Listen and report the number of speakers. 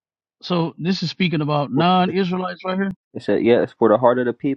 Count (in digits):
2